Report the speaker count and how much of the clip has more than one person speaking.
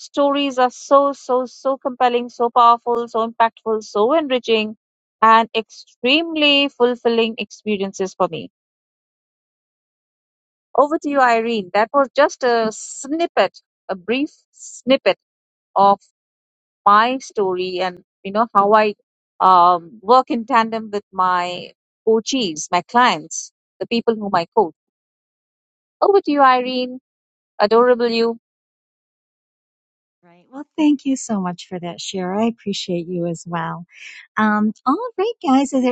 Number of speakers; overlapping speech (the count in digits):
2, no overlap